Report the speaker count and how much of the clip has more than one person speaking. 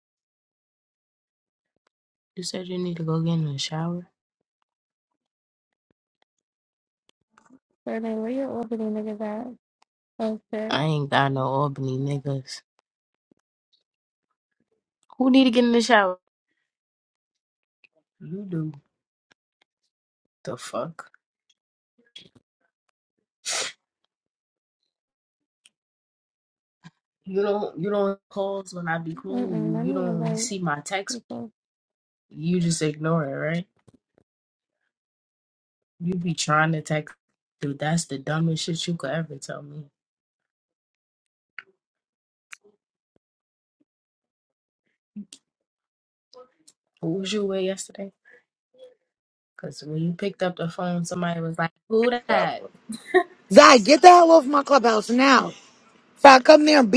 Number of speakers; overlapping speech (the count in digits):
3, about 2%